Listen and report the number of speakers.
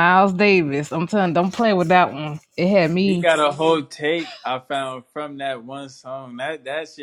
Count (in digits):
2